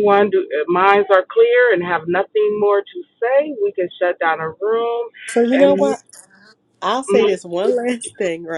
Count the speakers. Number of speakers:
2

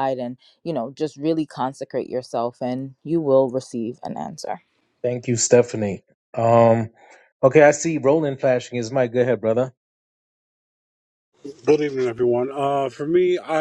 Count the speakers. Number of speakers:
3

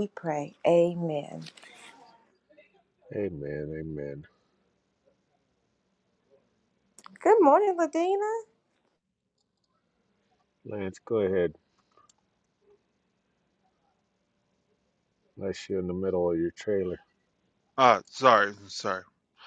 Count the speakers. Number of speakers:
3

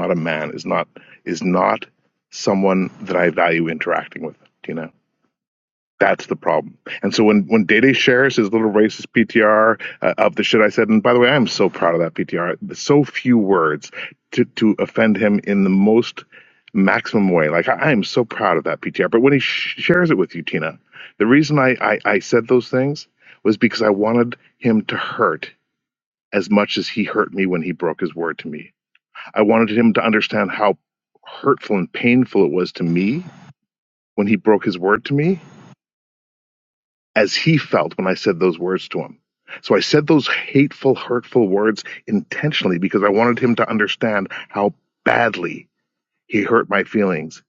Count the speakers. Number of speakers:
1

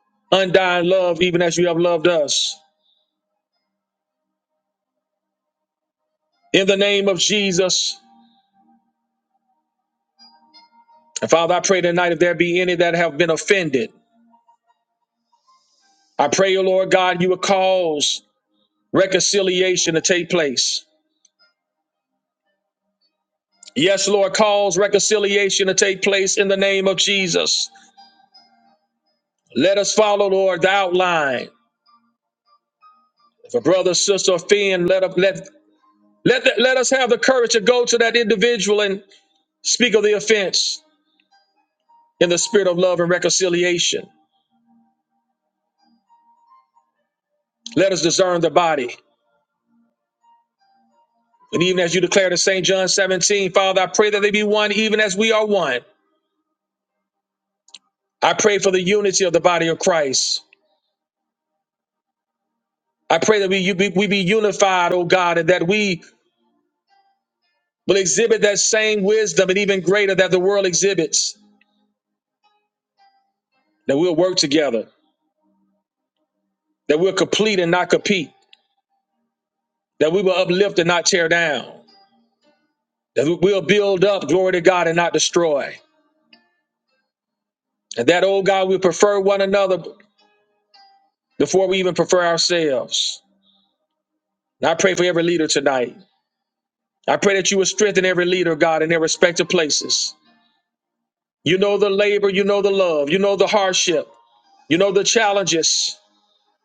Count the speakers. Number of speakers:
1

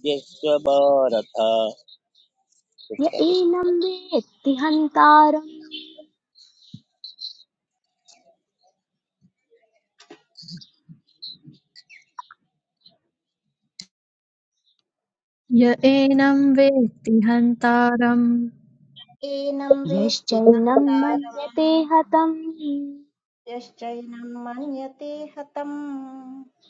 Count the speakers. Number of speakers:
4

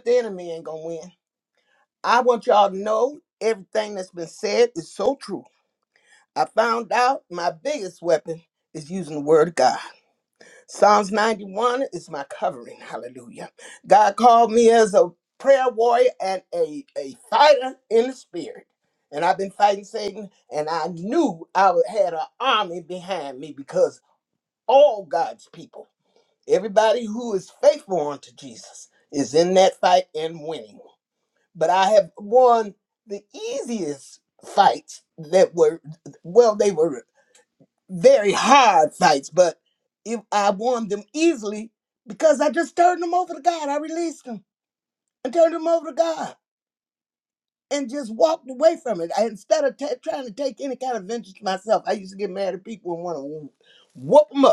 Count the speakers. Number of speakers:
1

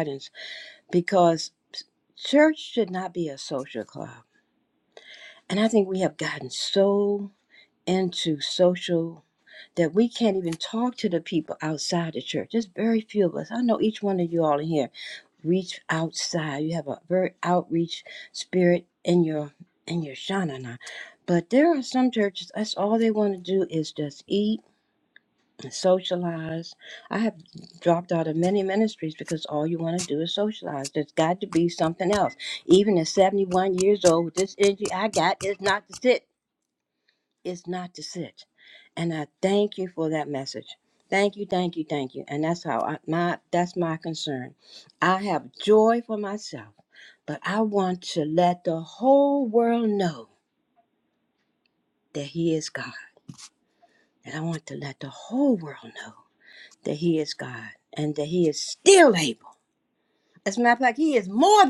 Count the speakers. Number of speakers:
1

